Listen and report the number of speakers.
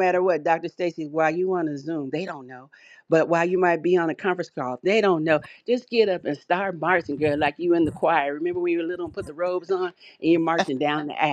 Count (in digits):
1